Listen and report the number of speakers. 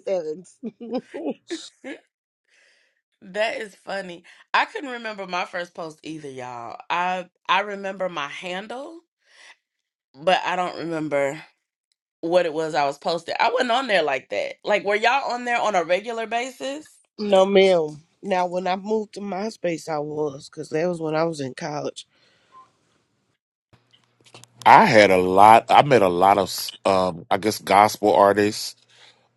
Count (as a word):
three